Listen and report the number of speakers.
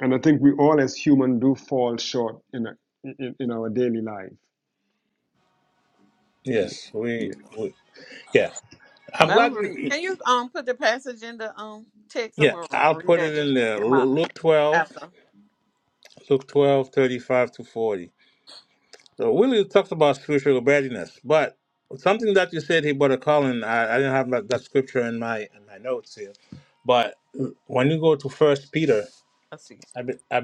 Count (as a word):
three